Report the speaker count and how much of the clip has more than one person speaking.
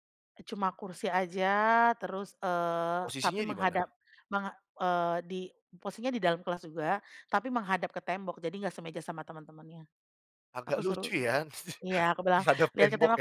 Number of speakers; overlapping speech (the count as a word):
two, about 16%